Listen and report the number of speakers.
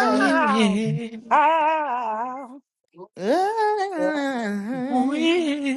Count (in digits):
3